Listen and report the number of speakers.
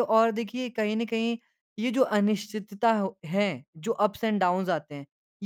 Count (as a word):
one